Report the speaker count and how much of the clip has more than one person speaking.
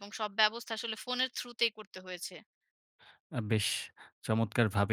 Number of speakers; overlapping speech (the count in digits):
2, no overlap